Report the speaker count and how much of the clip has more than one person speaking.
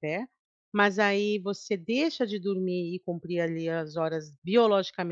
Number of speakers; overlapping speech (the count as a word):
one, no overlap